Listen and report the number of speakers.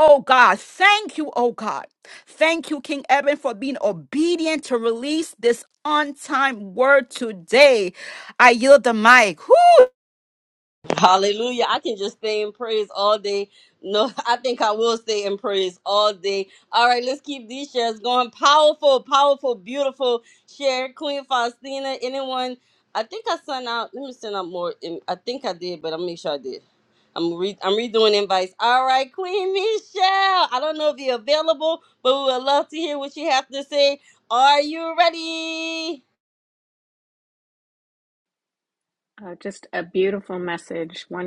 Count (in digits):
3